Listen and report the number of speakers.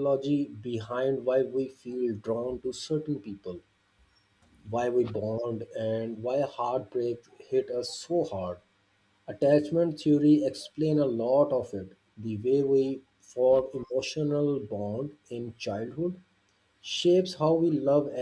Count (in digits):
1